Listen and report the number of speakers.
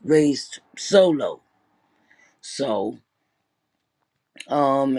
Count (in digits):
1